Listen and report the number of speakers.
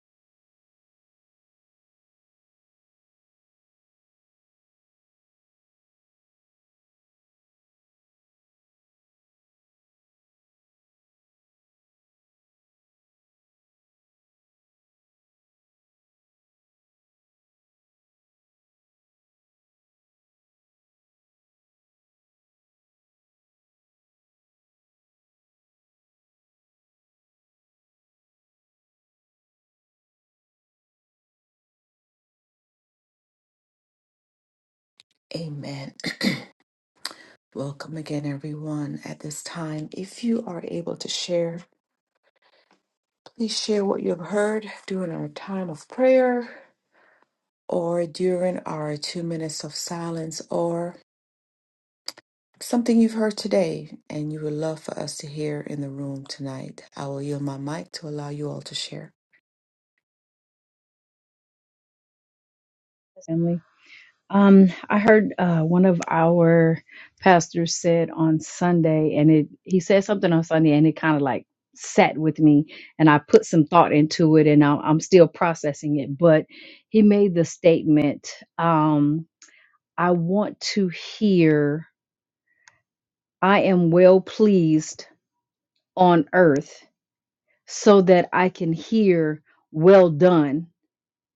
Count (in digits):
2